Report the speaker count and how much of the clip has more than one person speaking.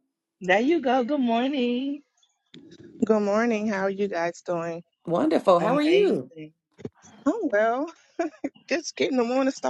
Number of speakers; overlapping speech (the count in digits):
3, about 7%